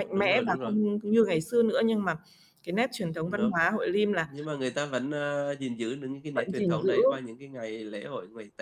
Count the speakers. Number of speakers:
2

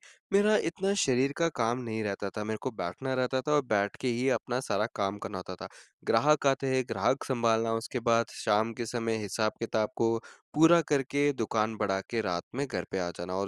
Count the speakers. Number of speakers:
1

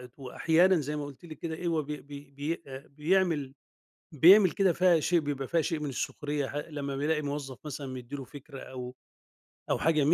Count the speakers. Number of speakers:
1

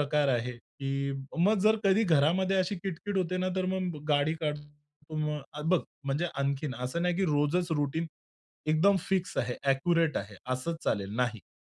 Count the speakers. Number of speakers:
1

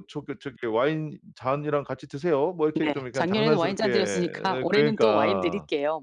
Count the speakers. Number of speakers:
2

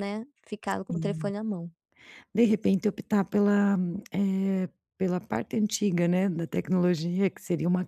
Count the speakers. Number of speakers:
2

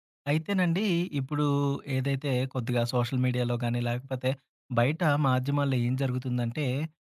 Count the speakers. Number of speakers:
1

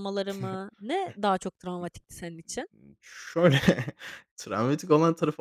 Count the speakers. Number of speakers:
2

